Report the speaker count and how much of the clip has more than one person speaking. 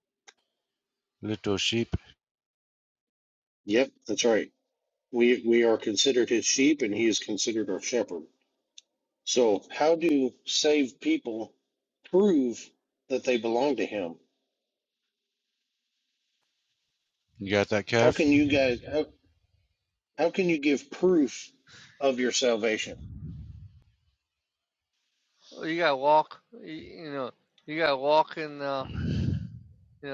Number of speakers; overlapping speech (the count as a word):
three, about 1%